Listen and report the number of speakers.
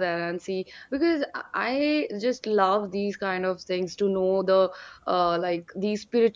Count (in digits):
1